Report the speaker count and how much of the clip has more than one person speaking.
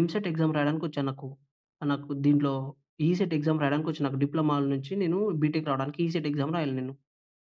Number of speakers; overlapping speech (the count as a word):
one, no overlap